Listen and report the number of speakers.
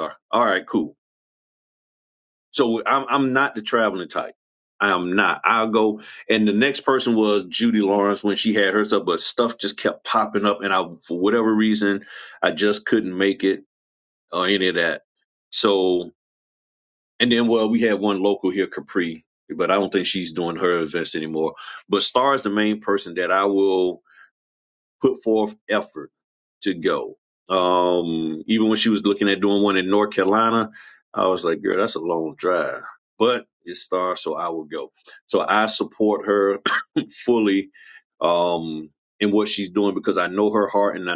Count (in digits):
1